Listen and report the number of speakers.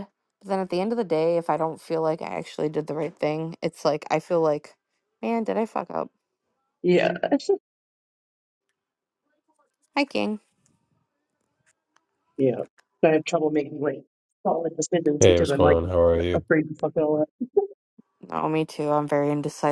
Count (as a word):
three